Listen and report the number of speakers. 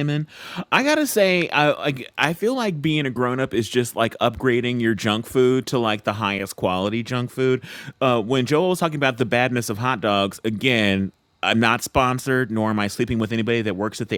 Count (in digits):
1